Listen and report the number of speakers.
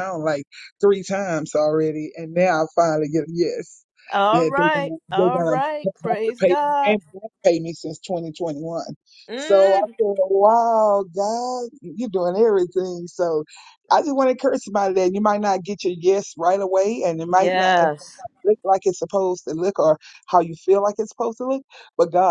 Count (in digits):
2